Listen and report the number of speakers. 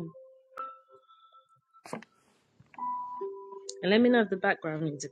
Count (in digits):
1